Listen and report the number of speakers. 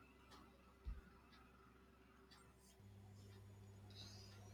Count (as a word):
zero